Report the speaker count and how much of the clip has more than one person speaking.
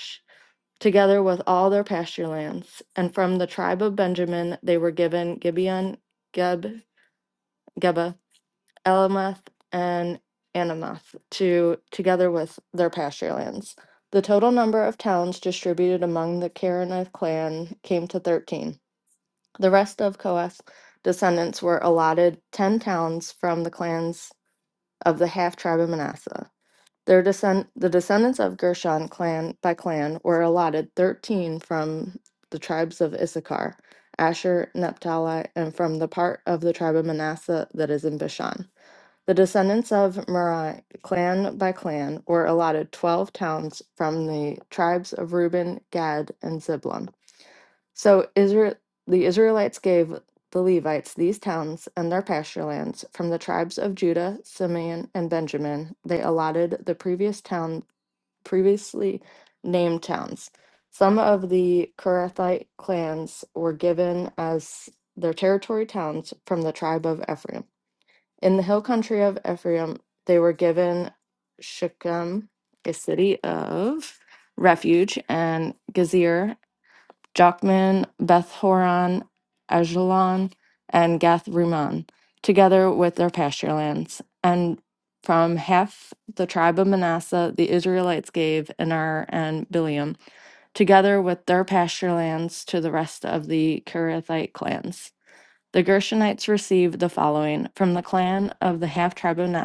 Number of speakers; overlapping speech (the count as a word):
one, no overlap